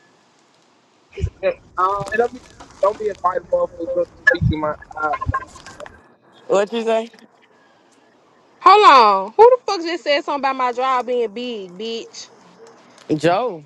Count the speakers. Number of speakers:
3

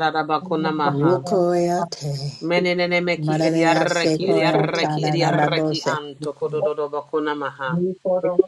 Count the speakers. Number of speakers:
3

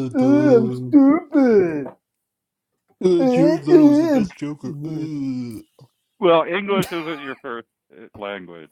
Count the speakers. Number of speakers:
3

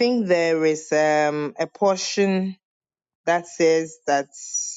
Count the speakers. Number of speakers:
1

